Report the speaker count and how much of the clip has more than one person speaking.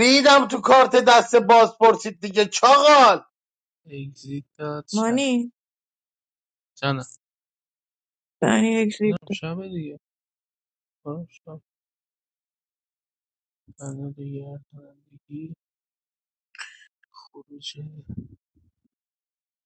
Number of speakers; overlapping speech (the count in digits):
3, about 3%